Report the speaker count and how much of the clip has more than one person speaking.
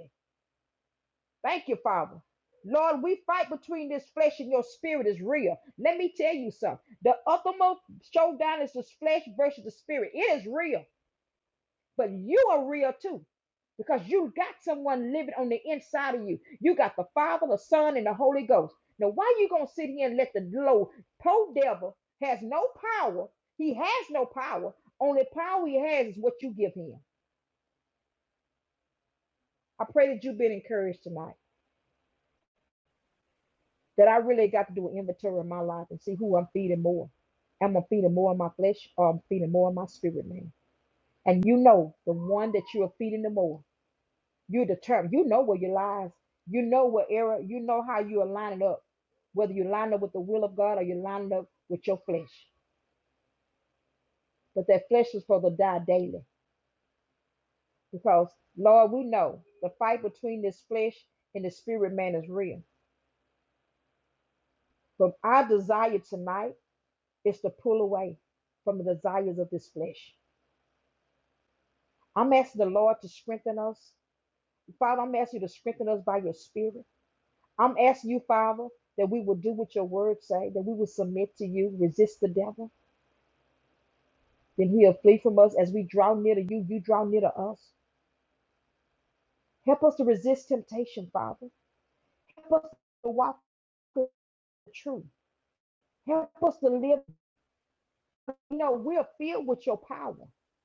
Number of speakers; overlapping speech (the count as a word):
one, no overlap